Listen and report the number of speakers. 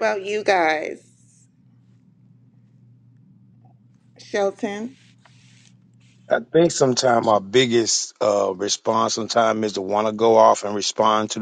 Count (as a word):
two